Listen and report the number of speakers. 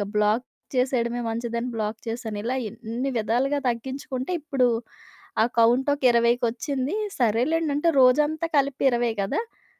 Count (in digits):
1